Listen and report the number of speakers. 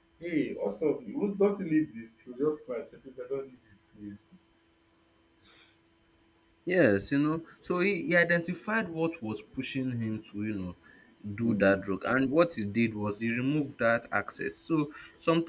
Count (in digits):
2